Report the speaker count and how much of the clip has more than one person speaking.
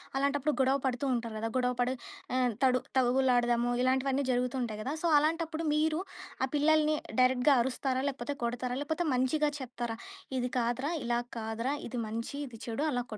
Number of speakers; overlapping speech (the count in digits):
1, no overlap